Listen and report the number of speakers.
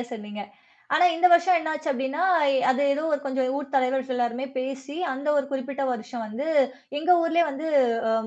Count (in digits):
1